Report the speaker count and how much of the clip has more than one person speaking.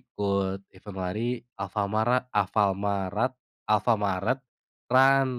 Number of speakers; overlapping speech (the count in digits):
1, no overlap